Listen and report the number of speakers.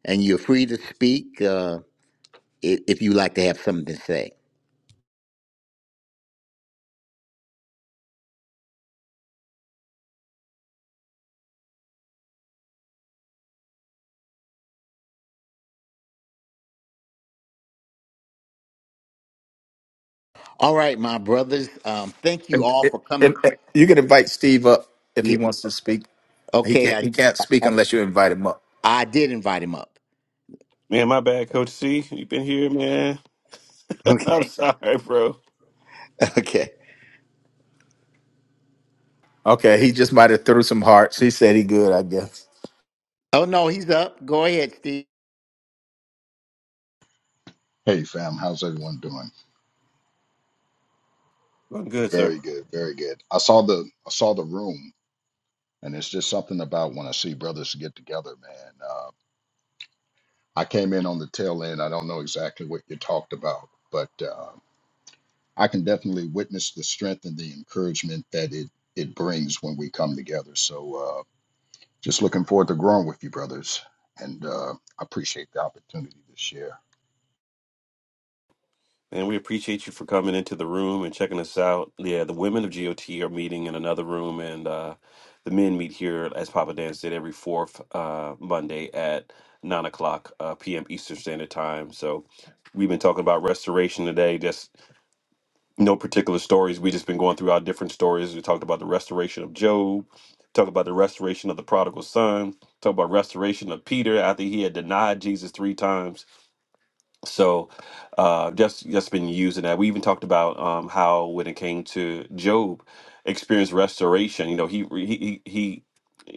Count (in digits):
4